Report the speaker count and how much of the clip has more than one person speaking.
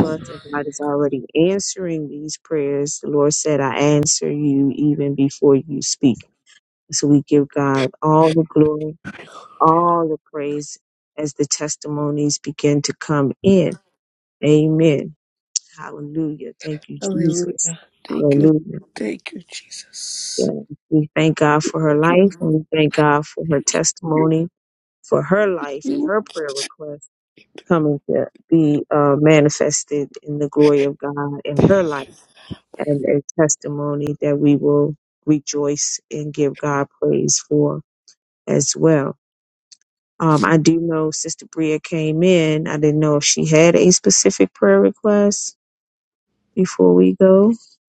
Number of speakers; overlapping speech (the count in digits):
2, about 5%